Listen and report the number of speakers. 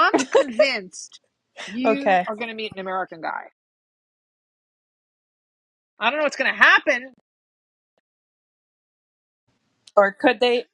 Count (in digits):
2